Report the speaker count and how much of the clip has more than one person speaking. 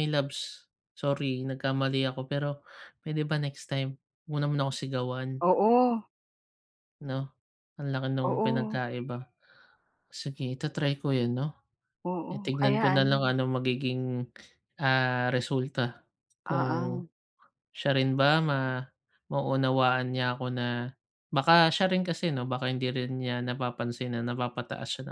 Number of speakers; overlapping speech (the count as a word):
two, about 8%